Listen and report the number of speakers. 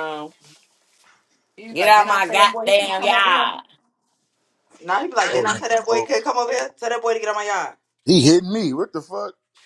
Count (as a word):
three